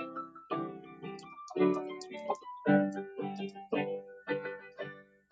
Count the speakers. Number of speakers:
0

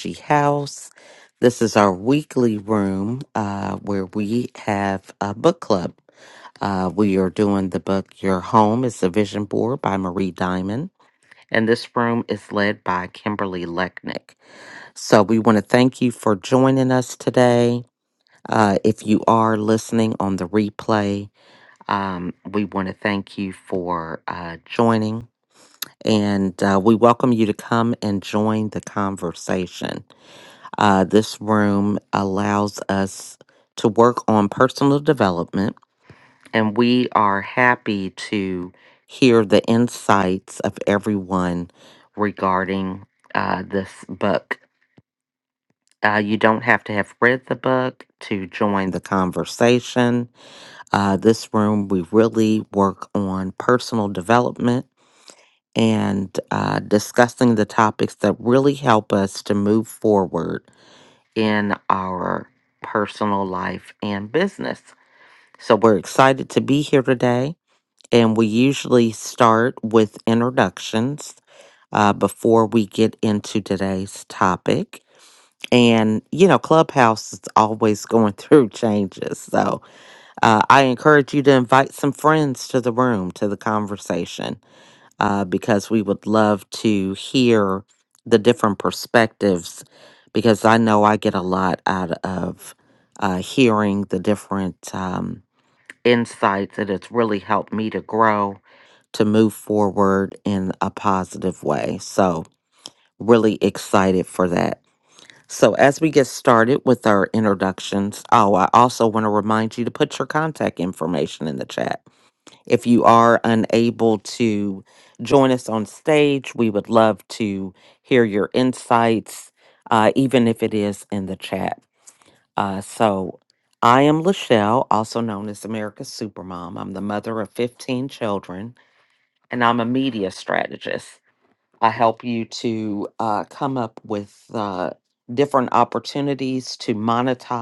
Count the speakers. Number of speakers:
1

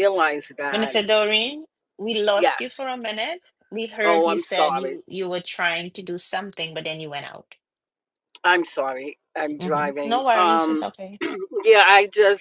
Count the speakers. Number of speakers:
2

